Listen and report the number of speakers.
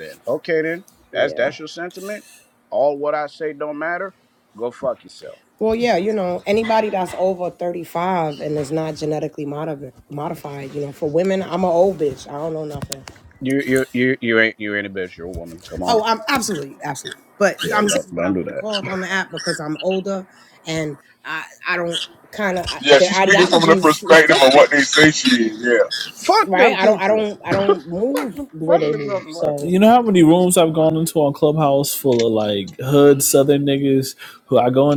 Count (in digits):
4